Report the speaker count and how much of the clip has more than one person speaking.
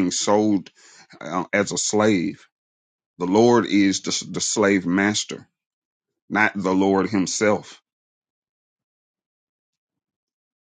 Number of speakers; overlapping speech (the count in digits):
1, no overlap